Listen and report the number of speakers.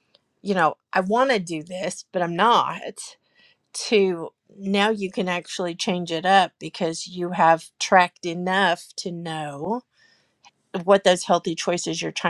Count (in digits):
1